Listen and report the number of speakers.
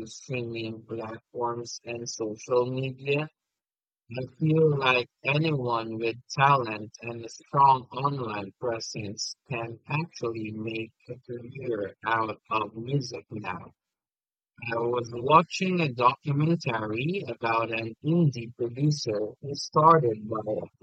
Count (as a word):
one